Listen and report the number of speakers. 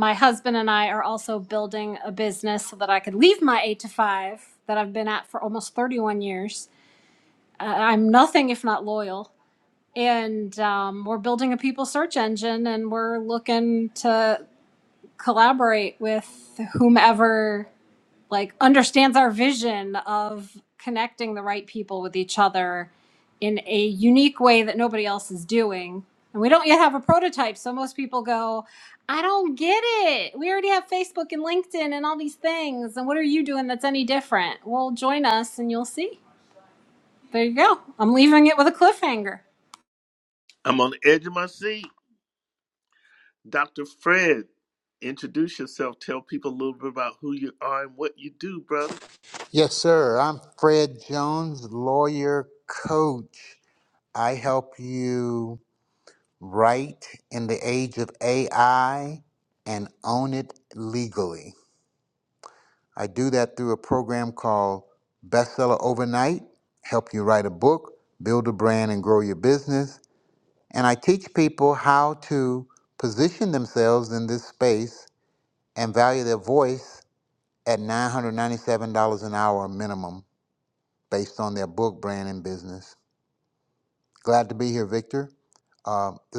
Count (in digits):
3